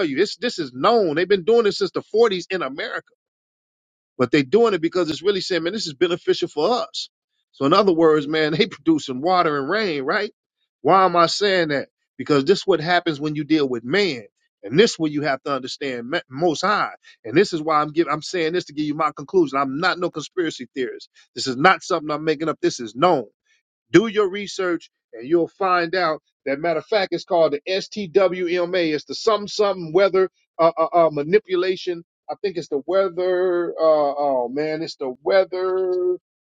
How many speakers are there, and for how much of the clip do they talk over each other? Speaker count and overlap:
one, no overlap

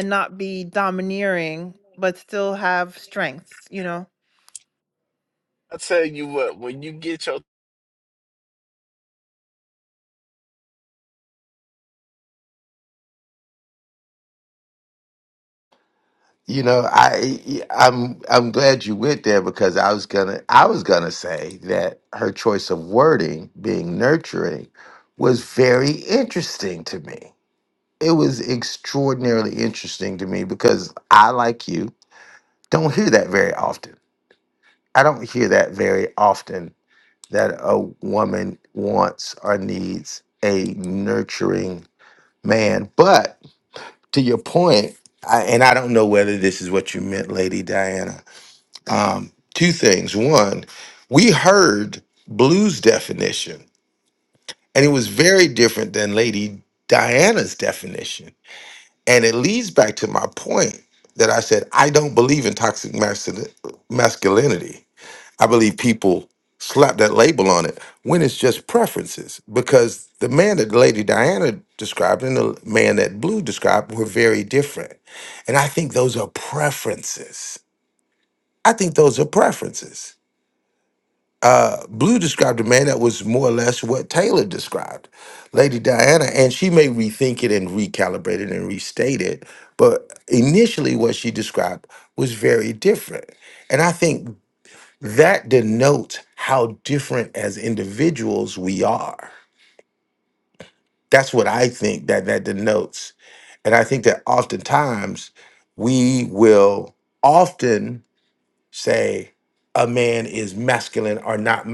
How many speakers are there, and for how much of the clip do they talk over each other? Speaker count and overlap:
three, no overlap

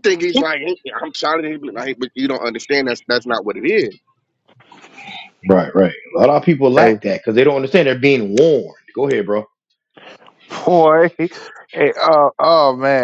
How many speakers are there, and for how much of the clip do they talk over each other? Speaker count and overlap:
three, about 2%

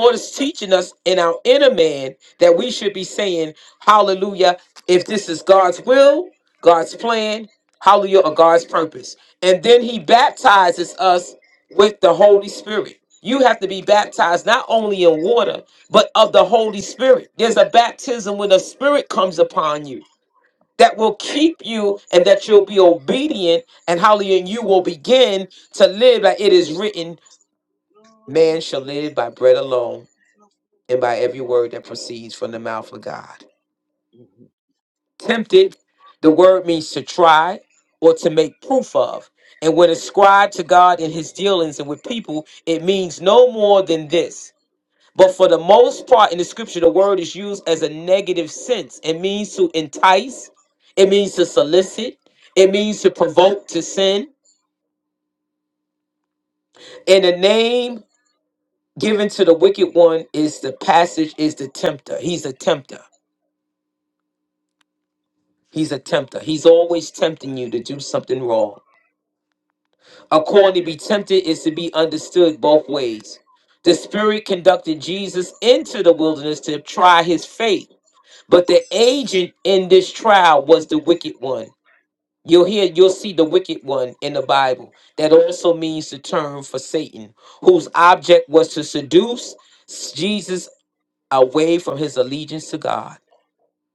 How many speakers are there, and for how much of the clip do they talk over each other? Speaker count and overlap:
one, no overlap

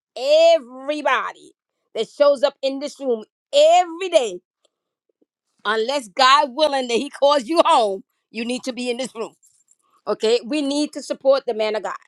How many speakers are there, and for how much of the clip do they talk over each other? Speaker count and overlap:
one, no overlap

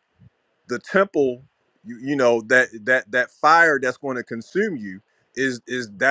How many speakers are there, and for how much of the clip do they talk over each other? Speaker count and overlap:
one, no overlap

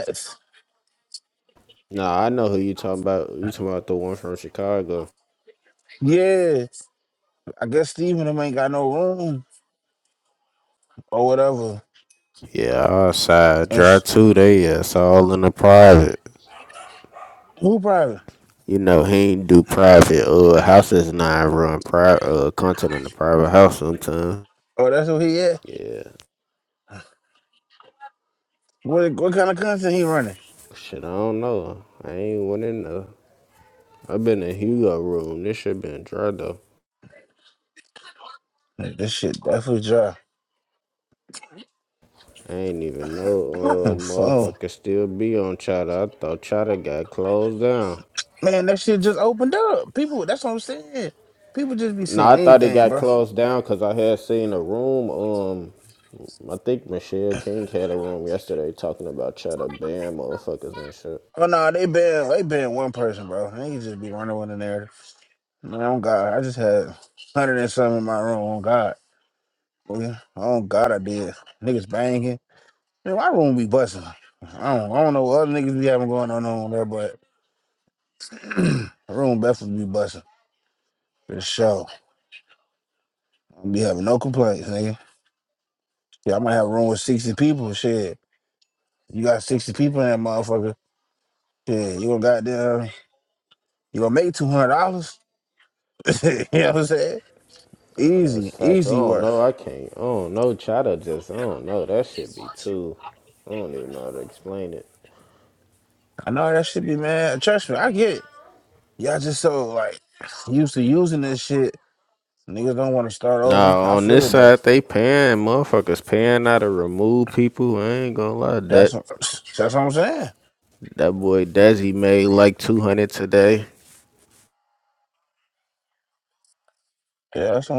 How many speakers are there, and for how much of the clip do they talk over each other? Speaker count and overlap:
two, about 3%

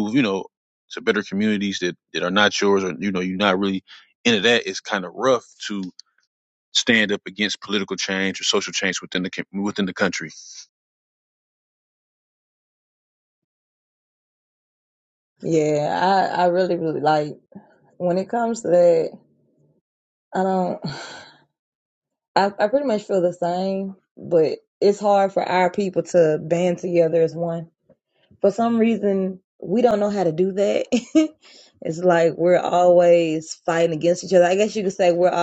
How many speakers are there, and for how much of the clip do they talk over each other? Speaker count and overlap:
two, no overlap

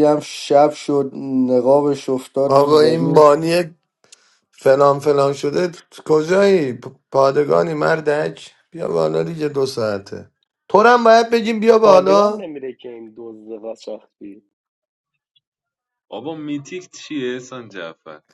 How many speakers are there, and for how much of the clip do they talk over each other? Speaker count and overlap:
four, about 8%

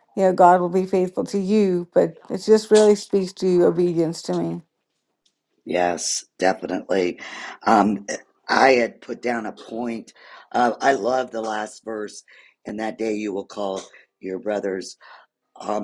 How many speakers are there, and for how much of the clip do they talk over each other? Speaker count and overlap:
two, no overlap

